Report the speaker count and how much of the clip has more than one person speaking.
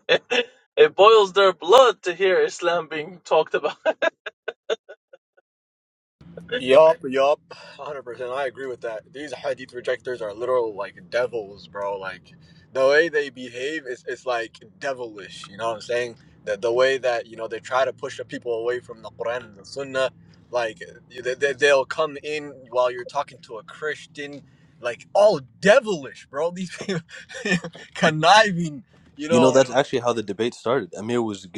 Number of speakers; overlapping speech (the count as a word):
three, about 1%